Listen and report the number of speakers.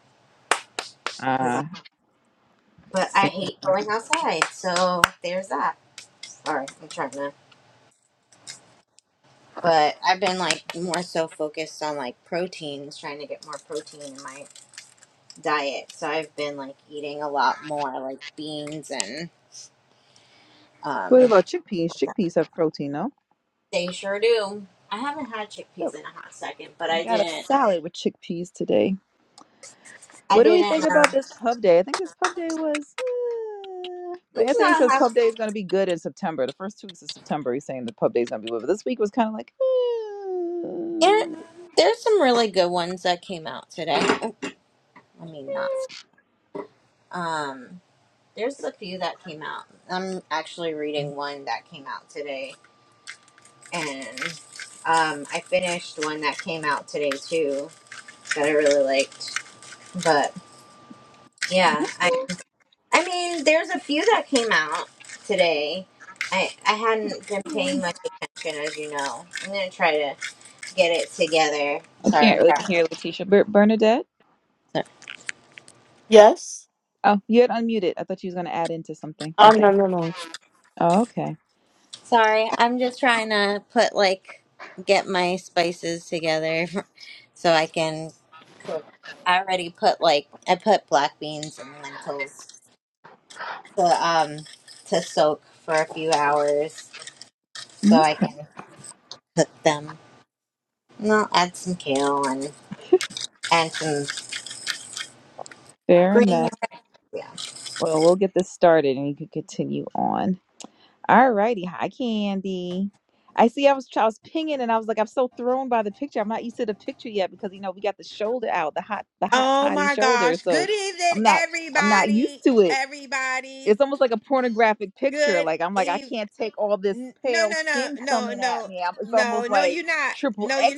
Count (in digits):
4